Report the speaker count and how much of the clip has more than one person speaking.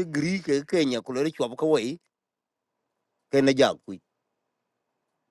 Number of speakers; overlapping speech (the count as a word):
one, no overlap